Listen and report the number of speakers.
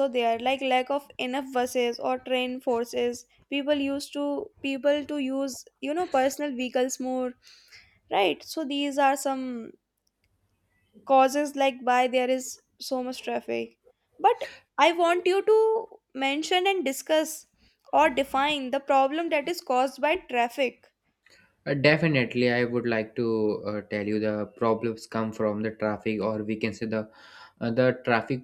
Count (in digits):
2